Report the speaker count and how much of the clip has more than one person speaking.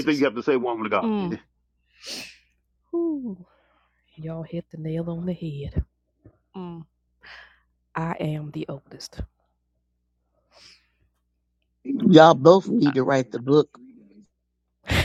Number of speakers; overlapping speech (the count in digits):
3, about 2%